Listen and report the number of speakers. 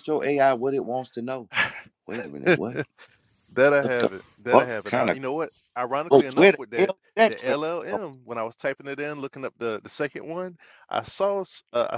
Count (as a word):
two